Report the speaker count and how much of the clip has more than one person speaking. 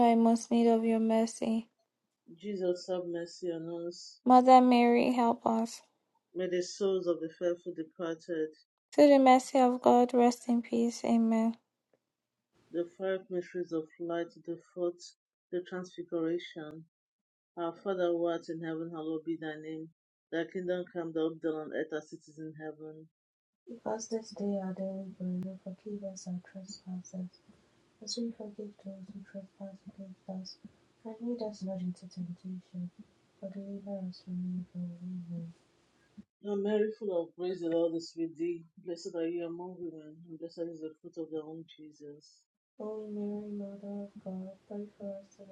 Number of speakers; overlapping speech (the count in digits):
3, no overlap